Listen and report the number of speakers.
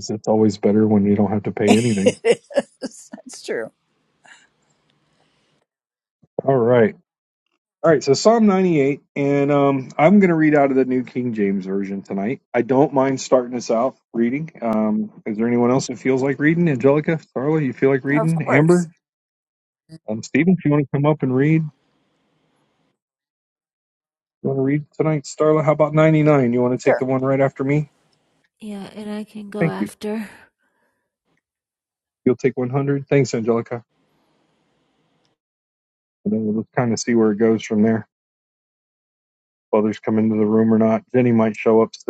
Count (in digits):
3